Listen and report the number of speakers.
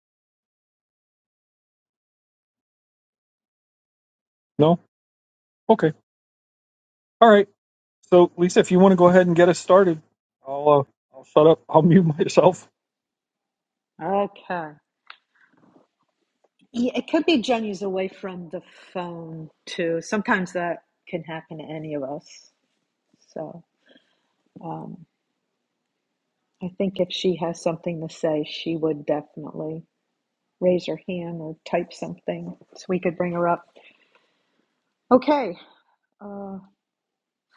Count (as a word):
two